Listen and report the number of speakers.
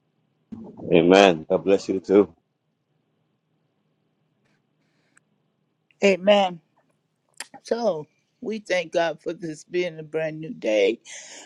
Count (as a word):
two